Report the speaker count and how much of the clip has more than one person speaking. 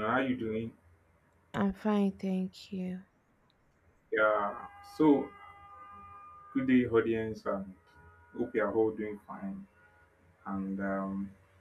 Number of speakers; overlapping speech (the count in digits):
2, no overlap